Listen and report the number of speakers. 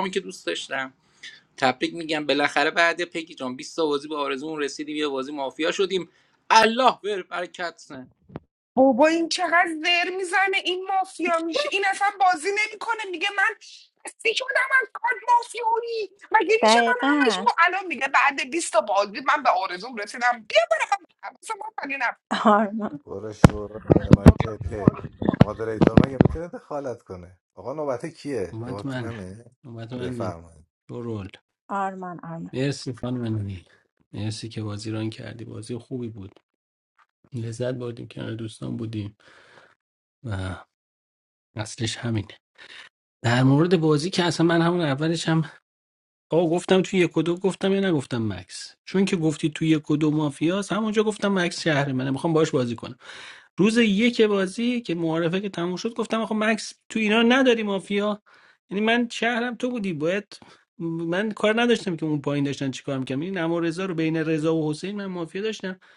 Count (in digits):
5